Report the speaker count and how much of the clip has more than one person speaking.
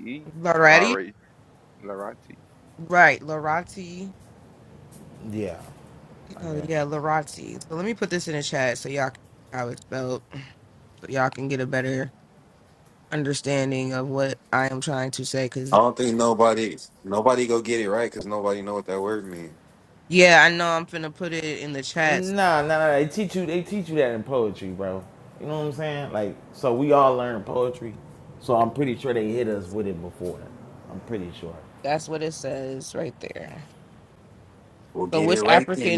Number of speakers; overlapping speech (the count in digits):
4, about 5%